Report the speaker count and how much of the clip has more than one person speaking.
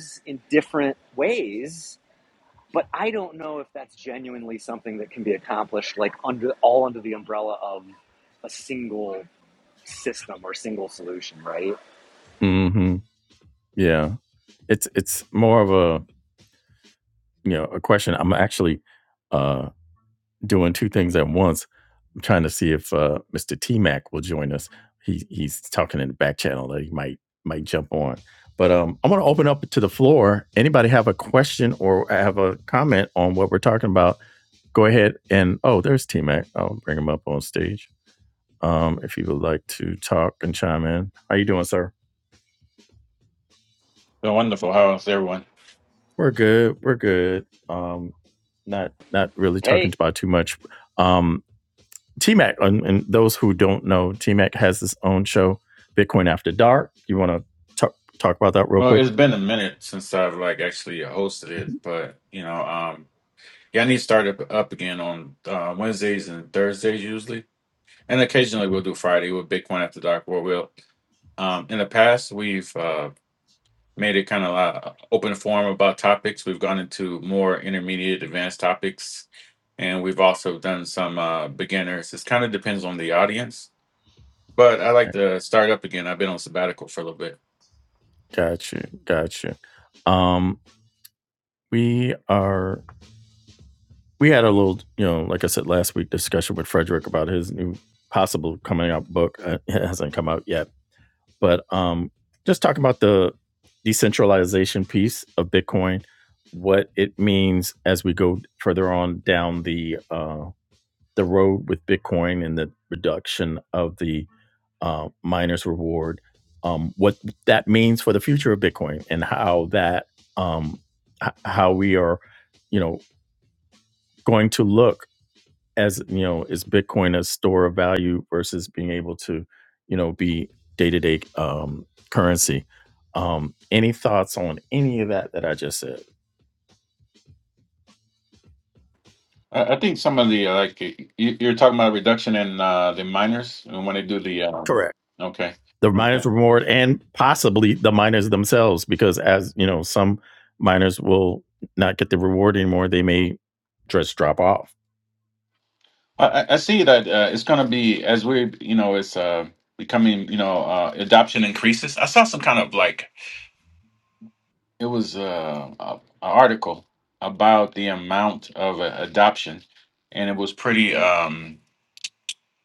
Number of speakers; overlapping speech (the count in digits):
3, under 1%